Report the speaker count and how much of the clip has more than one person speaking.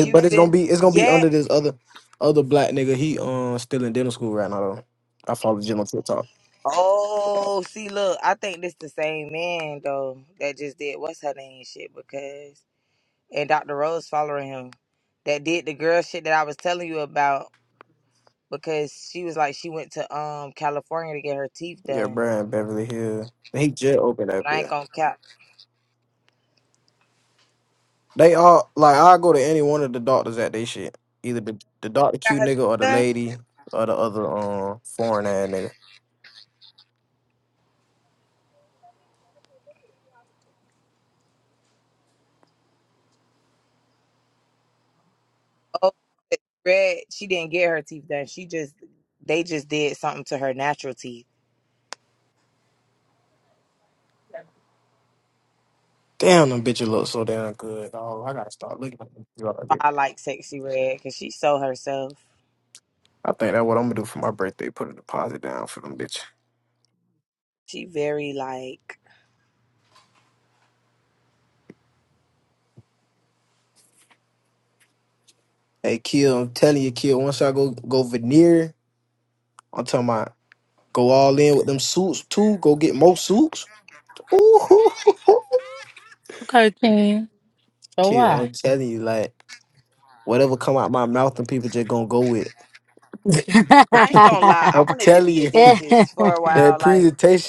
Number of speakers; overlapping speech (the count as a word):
three, about 4%